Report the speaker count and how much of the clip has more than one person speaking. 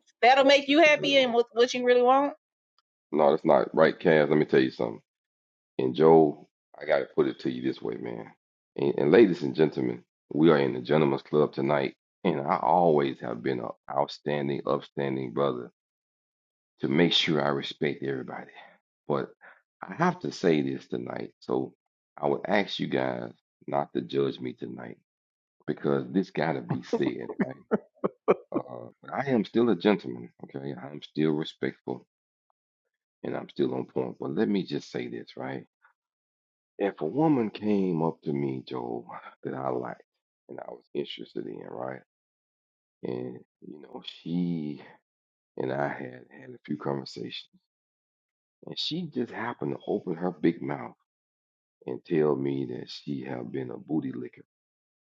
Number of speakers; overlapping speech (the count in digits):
2, about 1%